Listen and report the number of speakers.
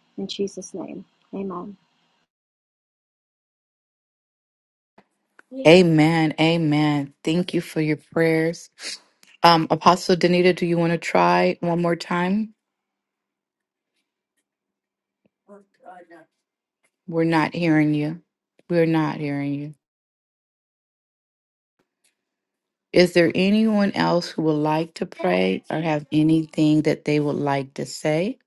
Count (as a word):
two